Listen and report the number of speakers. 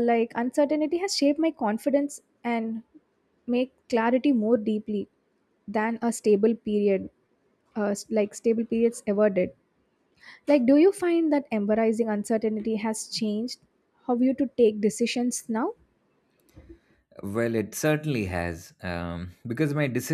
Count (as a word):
two